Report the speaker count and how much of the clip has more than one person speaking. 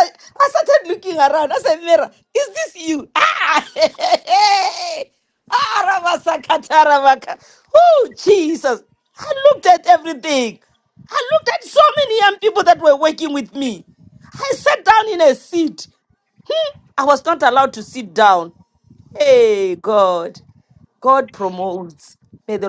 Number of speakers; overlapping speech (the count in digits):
1, no overlap